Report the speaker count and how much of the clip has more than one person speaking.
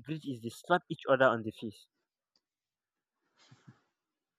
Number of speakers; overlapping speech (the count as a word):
one, no overlap